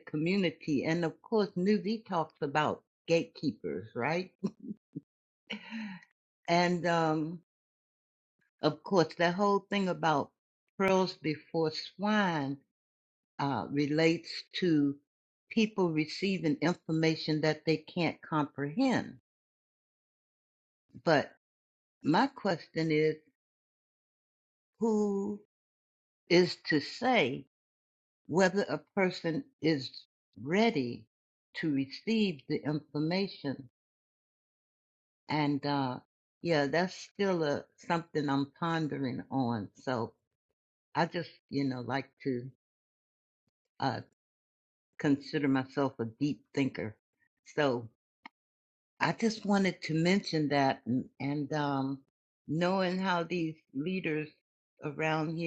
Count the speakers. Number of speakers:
1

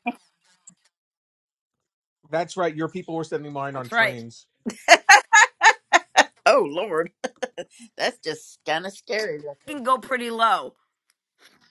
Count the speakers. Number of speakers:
3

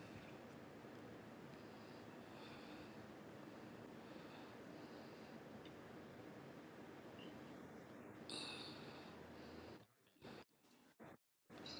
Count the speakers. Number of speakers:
0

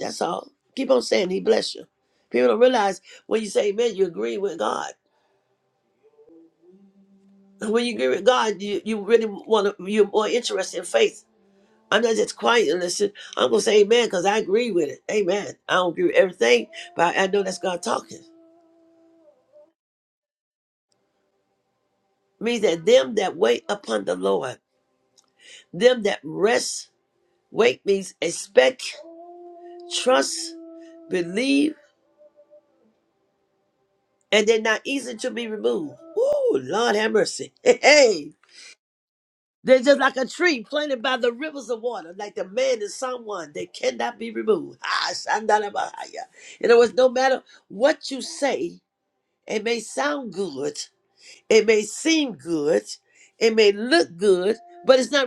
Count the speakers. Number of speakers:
1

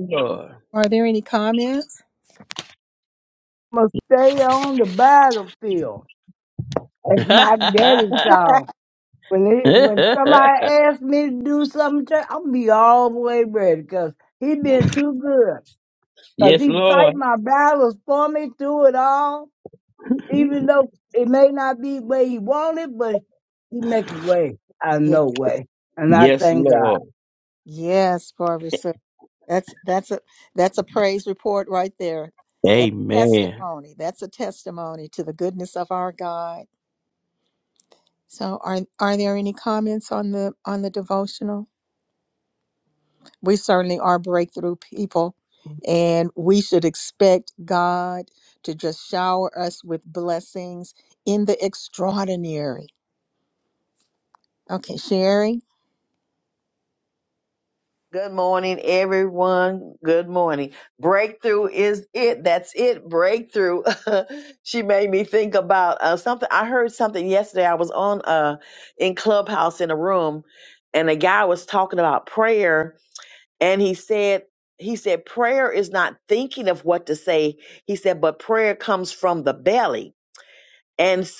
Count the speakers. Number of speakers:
4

